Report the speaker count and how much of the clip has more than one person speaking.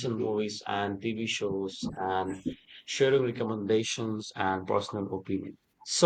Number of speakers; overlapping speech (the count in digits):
1, no overlap